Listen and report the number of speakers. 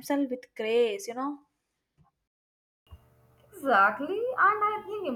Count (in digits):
2